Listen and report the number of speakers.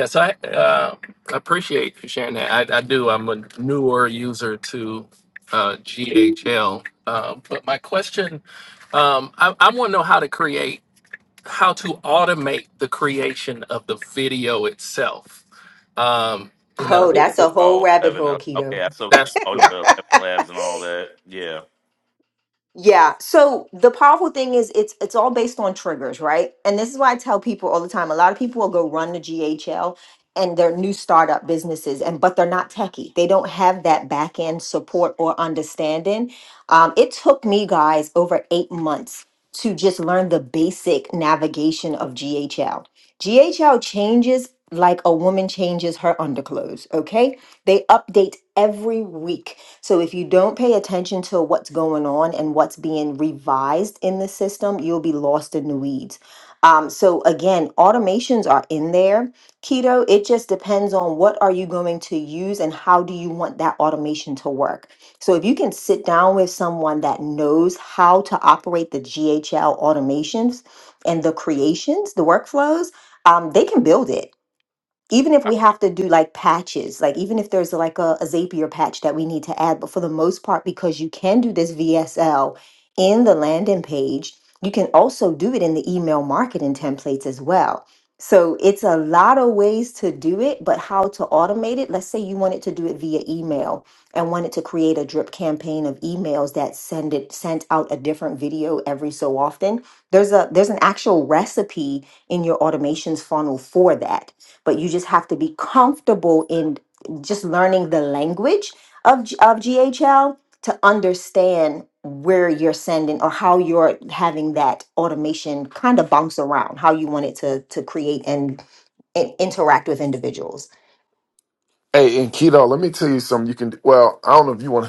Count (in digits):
4